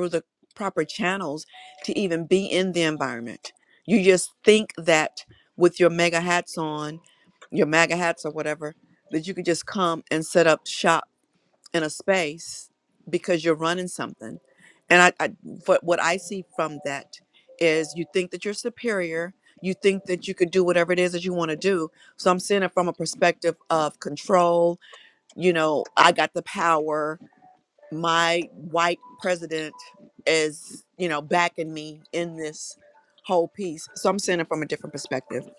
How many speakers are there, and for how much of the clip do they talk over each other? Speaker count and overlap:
one, no overlap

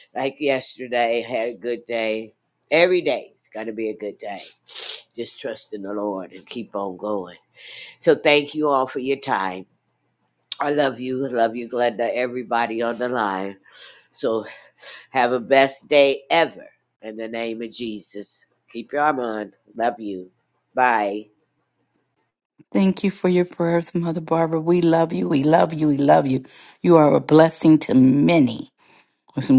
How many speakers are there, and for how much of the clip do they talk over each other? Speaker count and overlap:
two, no overlap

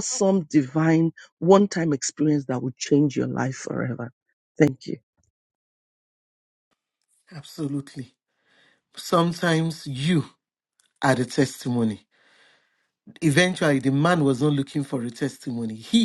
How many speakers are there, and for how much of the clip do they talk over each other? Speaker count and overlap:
two, no overlap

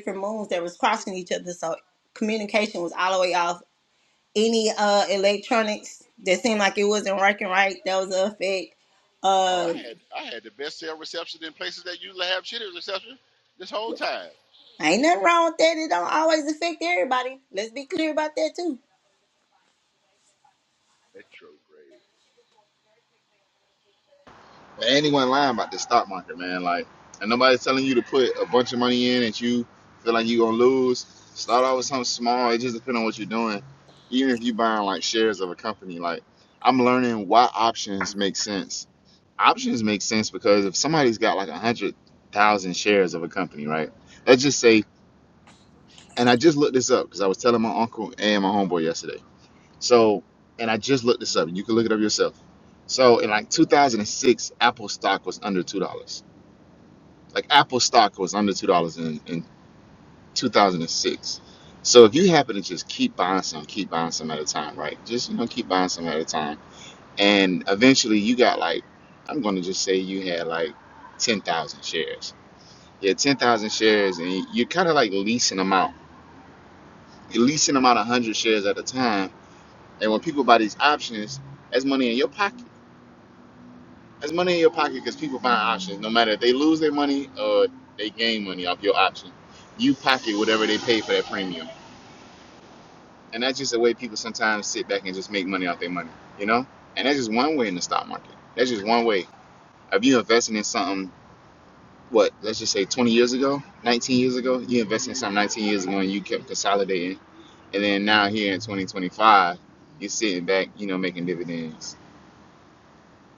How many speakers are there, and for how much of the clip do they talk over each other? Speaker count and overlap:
three, under 1%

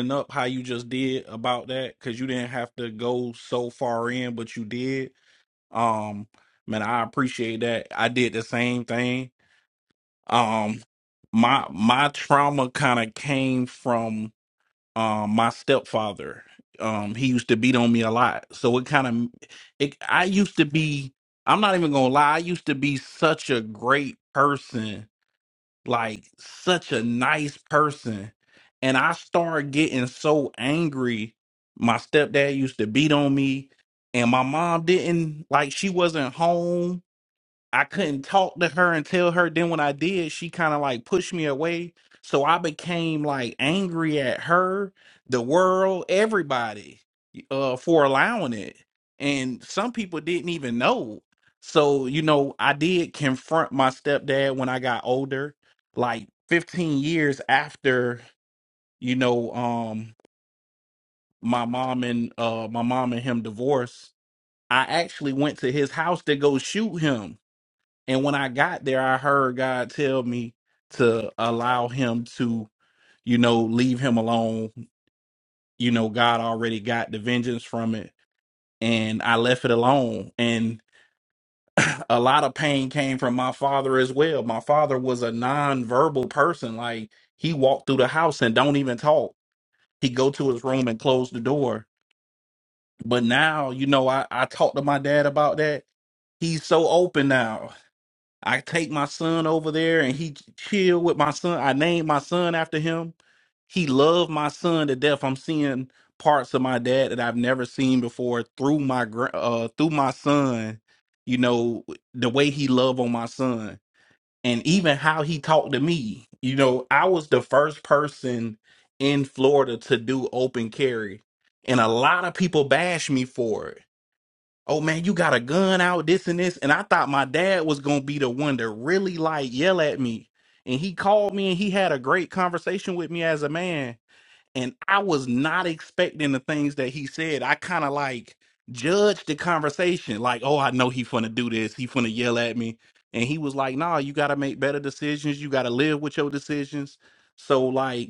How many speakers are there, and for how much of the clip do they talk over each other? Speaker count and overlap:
one, no overlap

